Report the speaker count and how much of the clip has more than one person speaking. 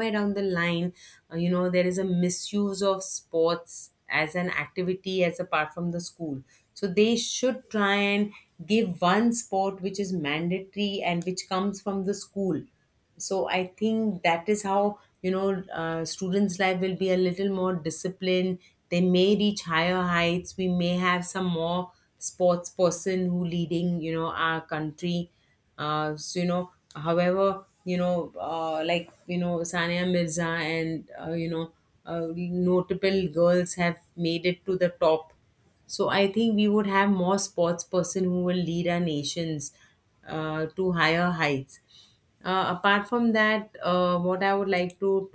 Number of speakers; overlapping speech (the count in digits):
1, no overlap